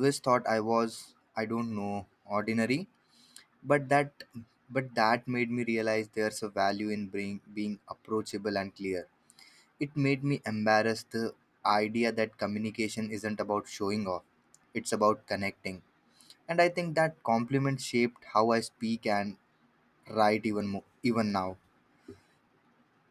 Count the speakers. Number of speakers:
one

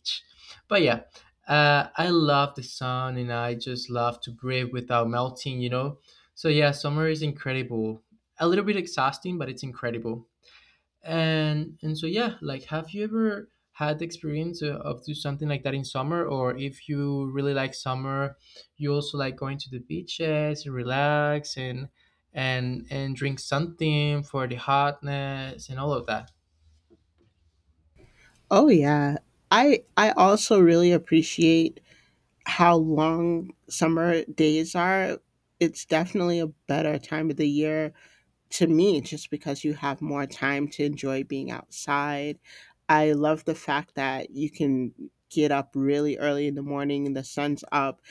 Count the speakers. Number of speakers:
two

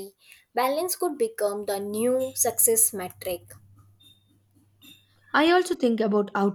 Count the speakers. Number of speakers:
two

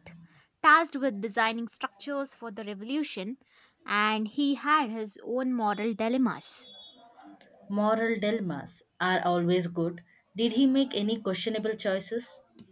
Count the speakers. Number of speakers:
two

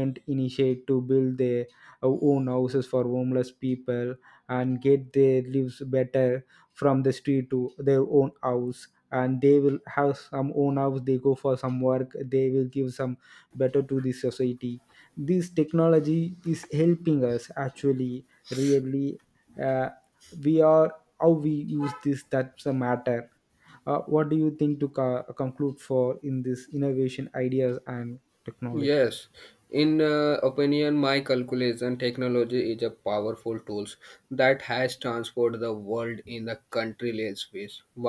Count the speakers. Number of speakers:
two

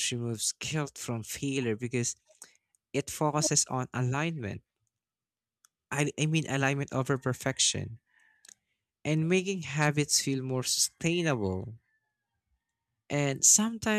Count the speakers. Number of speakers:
one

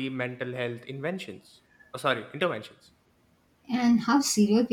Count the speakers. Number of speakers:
two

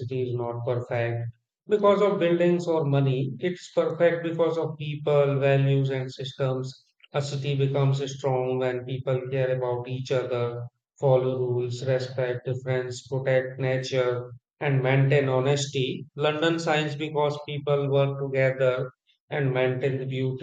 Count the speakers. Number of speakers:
one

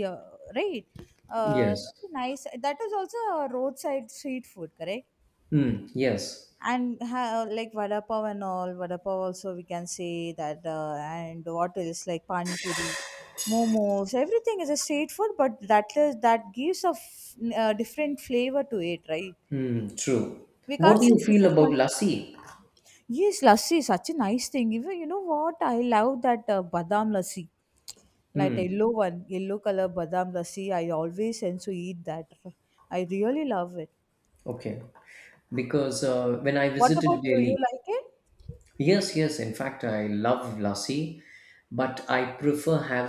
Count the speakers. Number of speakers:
two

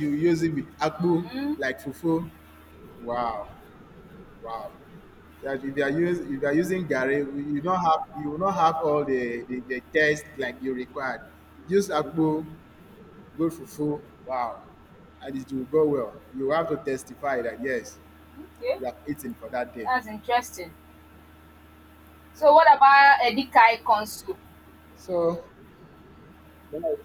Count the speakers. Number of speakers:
two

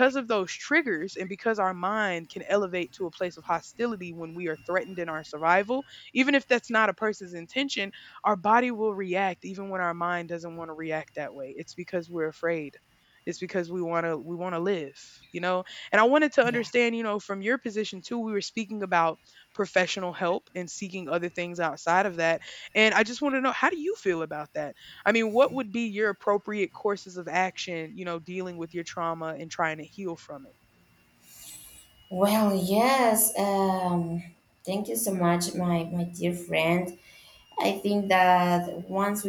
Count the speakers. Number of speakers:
two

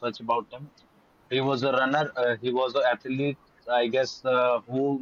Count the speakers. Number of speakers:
one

